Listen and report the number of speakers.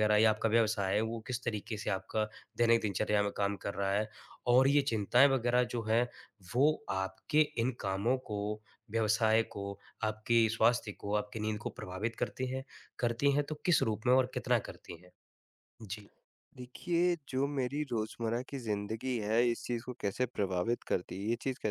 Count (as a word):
two